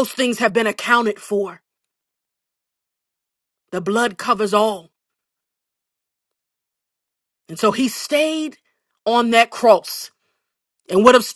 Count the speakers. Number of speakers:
one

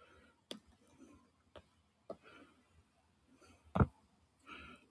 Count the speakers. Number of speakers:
zero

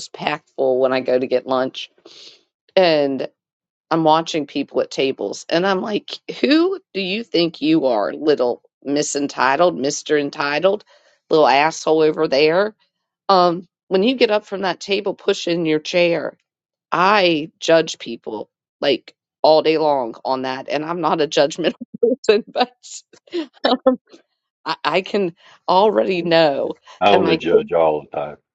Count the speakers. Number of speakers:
two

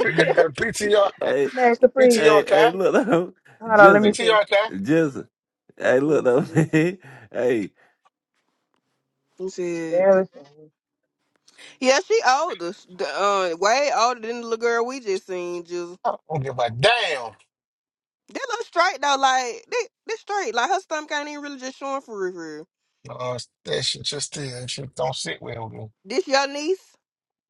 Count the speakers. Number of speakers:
four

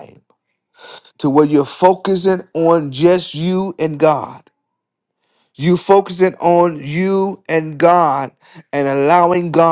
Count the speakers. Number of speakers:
one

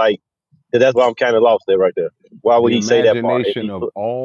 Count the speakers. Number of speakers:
two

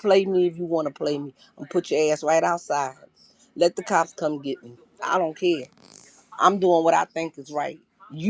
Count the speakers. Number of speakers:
one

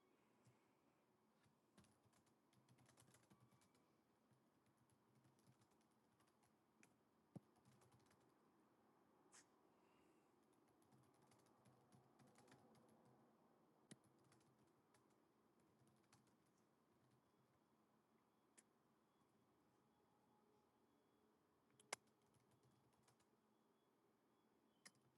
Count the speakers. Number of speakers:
zero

